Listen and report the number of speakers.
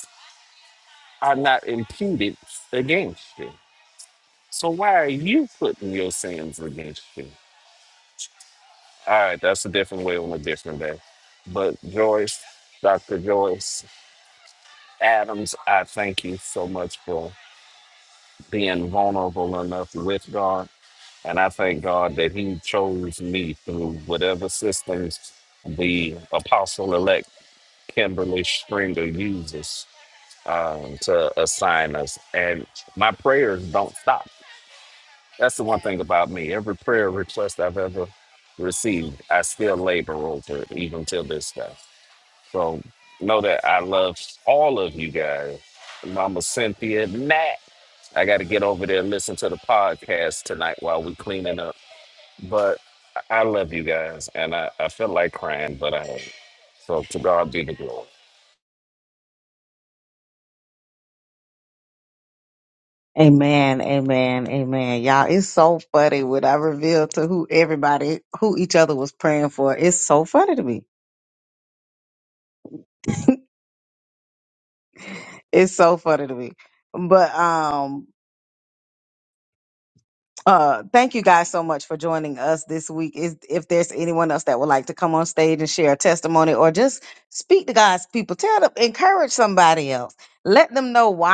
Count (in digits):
2